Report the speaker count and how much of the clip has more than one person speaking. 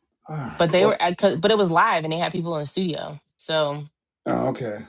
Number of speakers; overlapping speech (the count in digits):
2, about 7%